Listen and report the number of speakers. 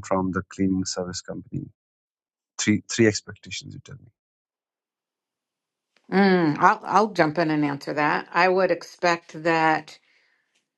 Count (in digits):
2